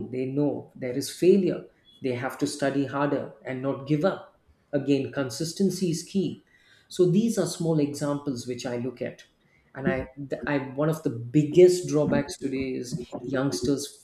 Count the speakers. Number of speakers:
1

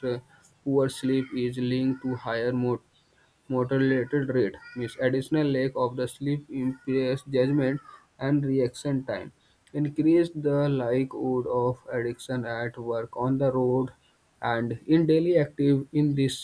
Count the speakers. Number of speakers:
1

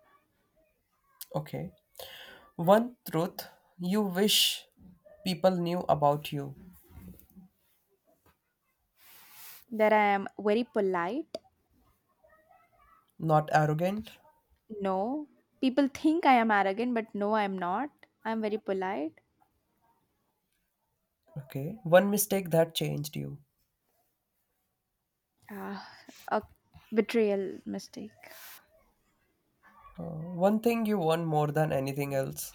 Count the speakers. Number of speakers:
2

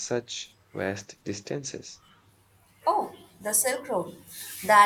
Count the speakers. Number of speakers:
2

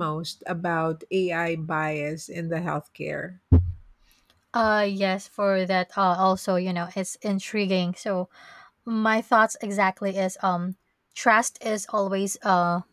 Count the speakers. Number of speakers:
2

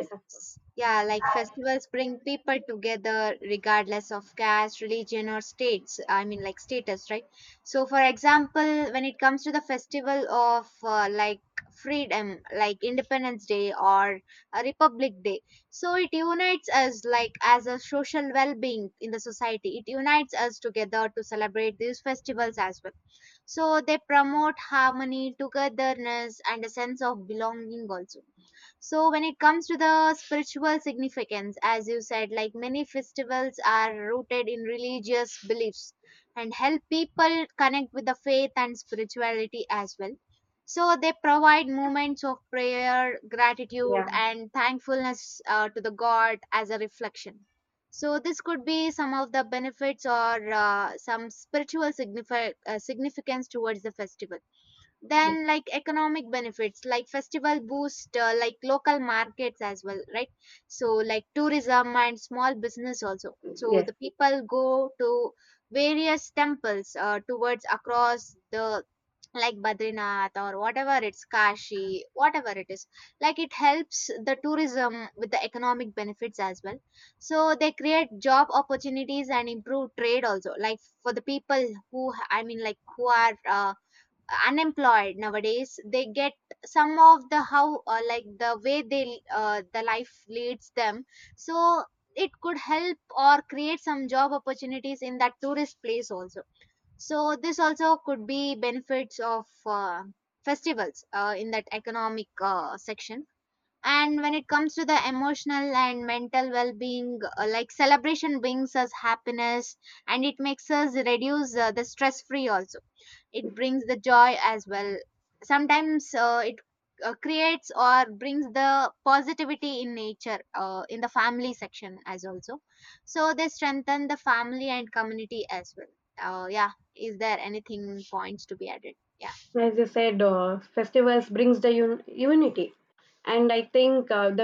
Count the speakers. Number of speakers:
2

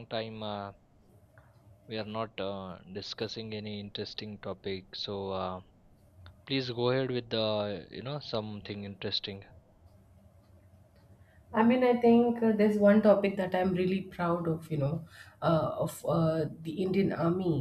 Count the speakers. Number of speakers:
2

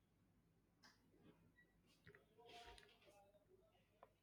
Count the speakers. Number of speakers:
0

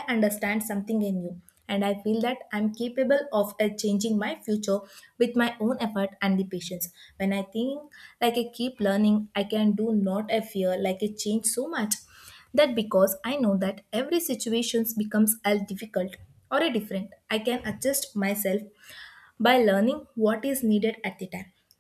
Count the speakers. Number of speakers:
1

